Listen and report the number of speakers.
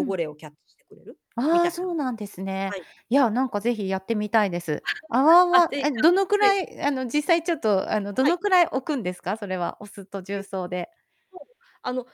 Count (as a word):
two